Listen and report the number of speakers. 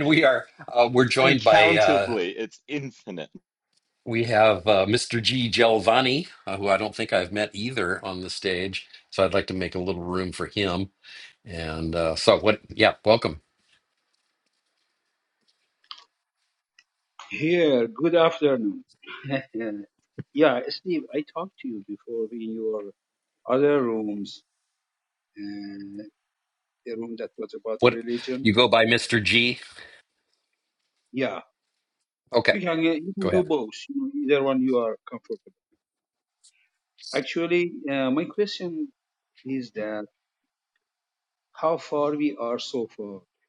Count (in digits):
3